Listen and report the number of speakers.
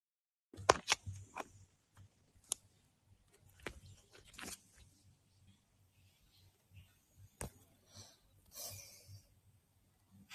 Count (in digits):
0